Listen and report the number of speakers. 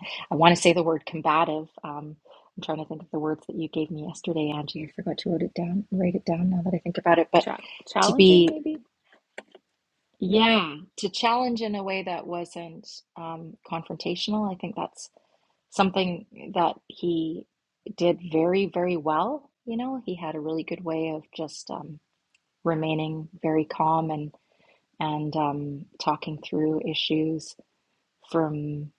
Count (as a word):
two